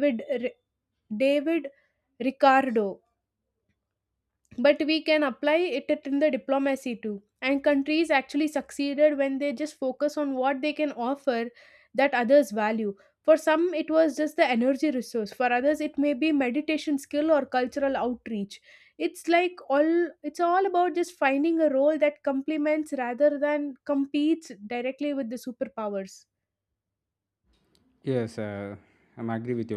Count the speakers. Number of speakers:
two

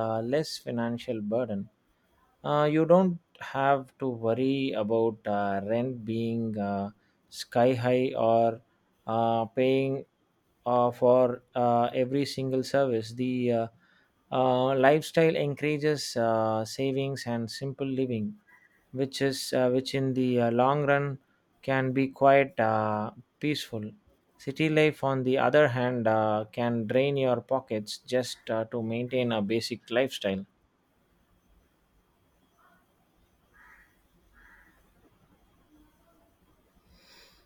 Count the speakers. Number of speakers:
one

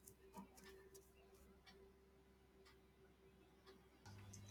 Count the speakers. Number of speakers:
zero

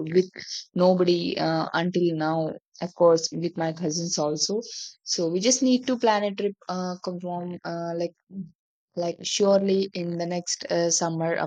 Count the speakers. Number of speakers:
one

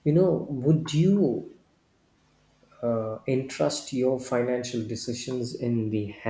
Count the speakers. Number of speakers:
one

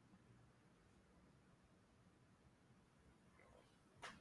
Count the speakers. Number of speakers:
zero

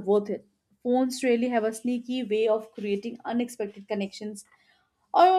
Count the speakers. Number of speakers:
one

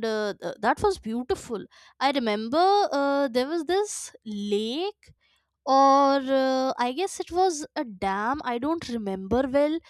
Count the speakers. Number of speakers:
one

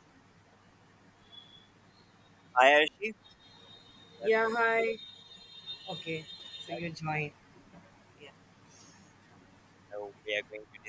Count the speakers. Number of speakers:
two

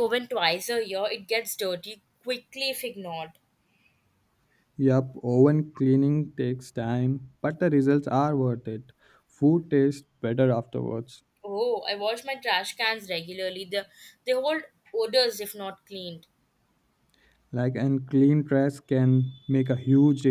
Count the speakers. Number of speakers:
two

